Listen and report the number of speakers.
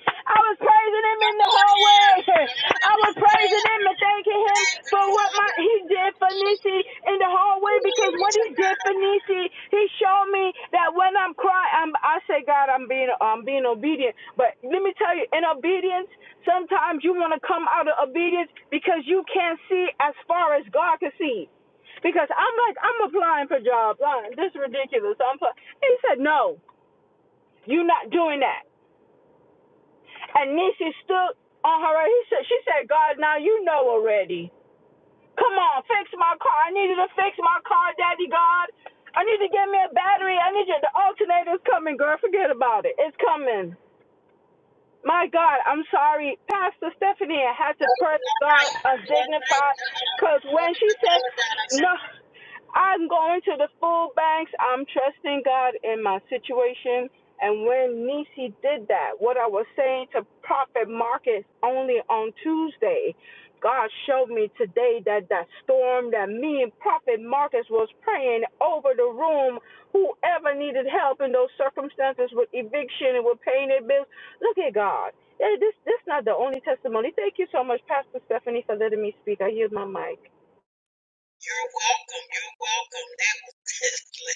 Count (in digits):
2